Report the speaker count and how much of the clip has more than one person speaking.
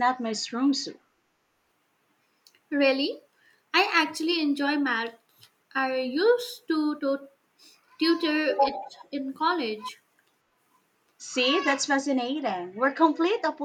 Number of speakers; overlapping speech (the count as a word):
two, no overlap